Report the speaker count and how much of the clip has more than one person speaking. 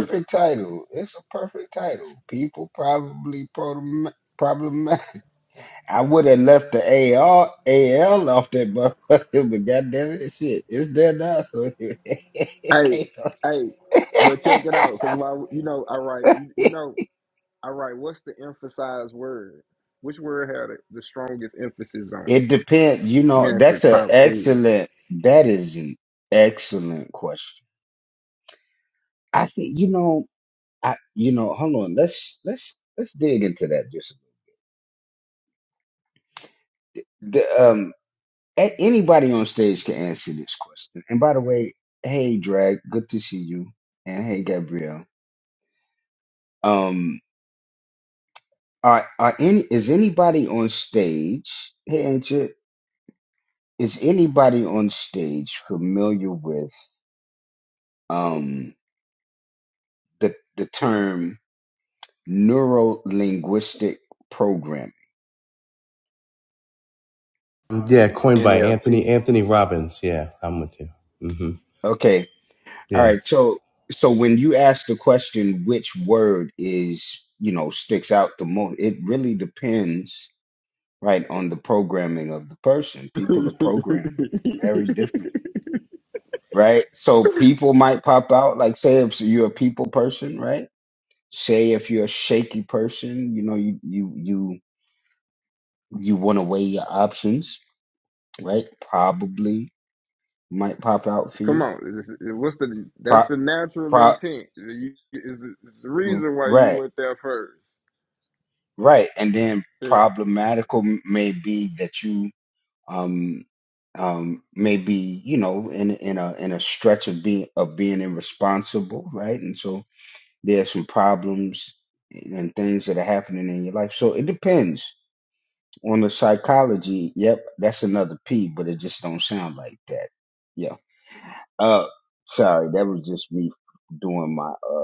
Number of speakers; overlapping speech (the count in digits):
3, about 3%